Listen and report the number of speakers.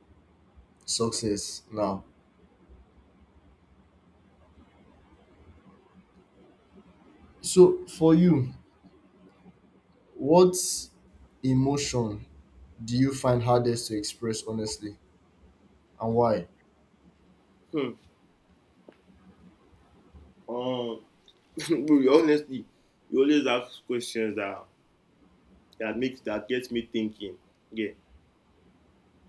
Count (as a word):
two